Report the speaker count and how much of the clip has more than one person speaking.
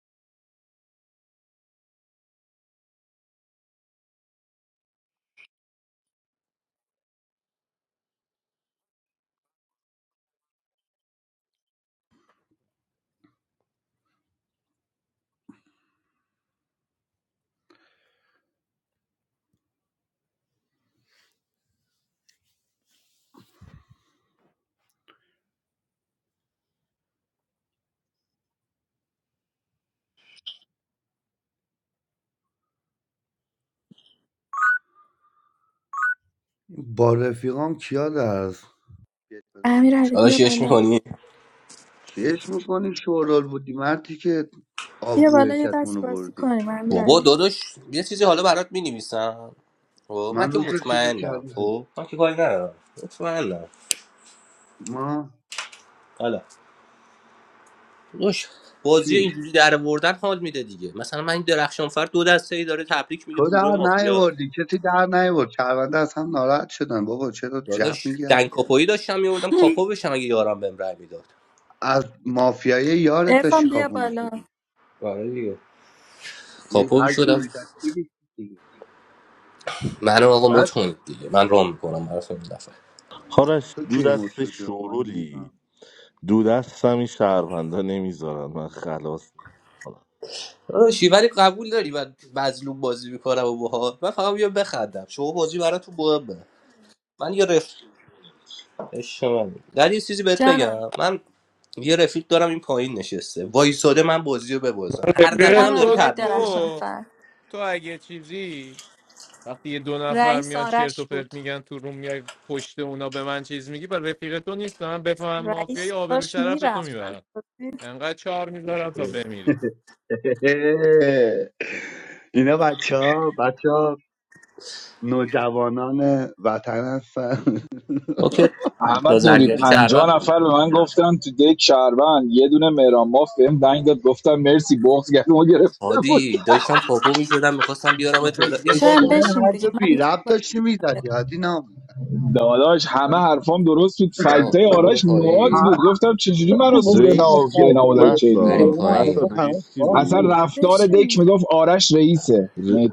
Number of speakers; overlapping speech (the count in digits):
6, about 16%